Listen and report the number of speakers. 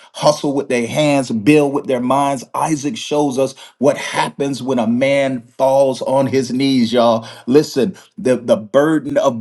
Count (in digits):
1